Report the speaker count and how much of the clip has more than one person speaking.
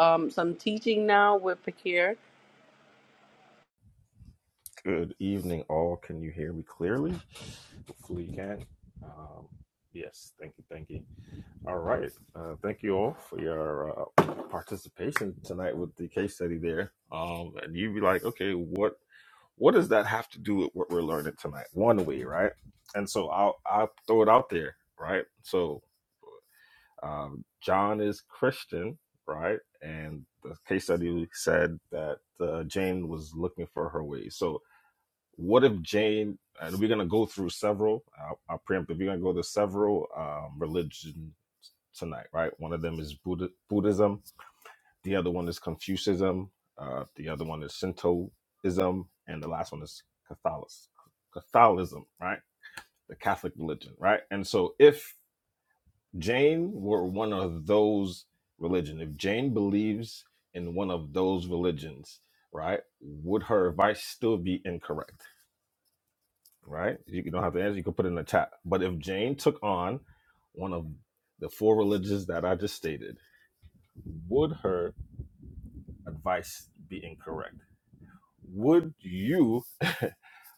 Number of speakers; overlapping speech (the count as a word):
two, no overlap